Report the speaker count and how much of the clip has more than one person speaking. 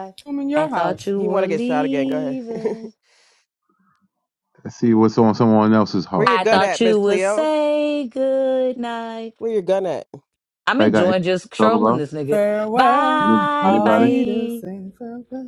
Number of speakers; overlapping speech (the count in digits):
4, about 37%